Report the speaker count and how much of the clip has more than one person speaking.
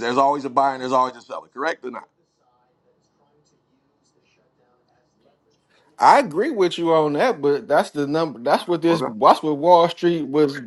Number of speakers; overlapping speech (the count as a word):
two, about 2%